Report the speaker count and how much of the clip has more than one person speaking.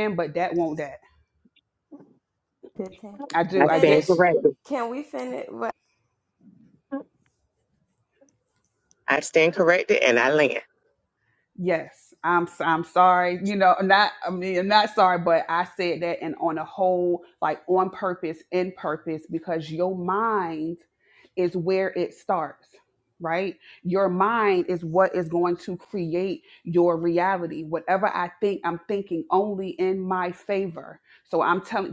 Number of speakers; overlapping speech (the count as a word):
three, about 3%